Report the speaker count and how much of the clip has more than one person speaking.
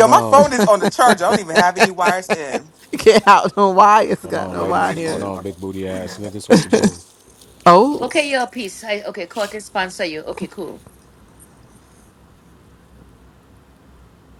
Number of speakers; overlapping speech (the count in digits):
4, about 12%